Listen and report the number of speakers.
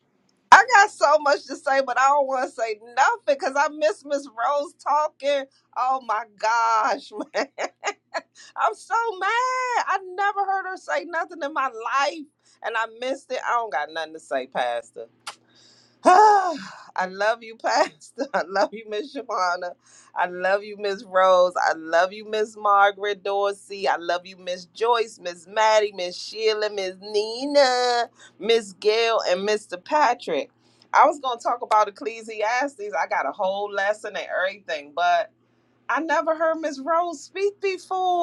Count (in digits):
1